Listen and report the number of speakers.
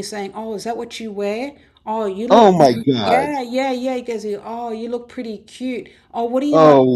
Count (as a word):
two